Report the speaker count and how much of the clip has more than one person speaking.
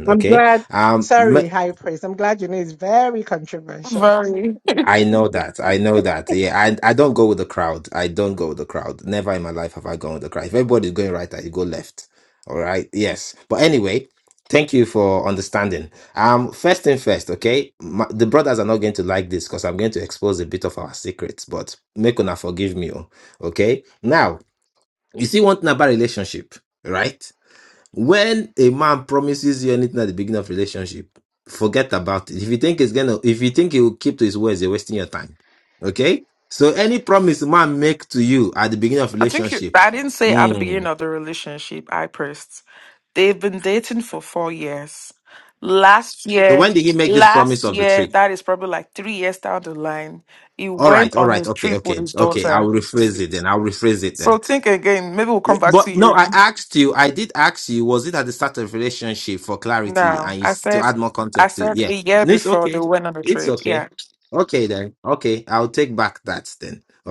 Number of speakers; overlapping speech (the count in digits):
3, about 14%